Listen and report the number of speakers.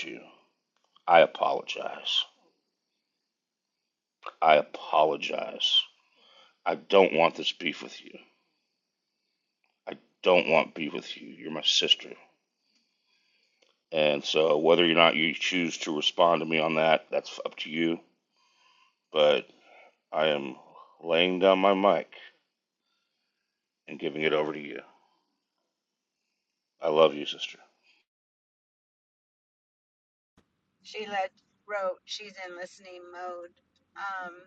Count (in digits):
2